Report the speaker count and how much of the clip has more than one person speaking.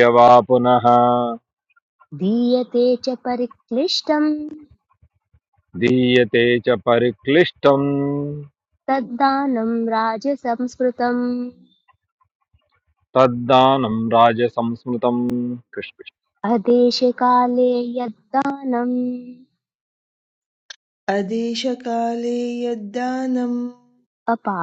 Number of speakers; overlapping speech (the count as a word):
three, no overlap